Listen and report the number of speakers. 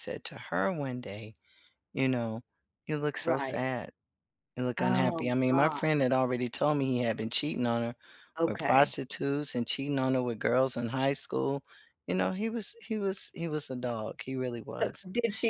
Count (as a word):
two